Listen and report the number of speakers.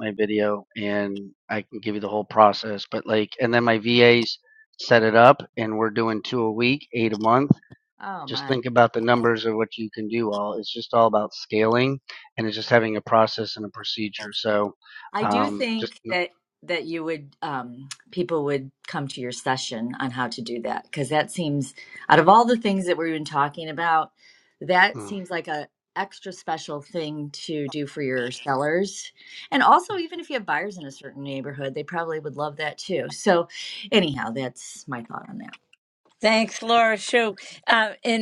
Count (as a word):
three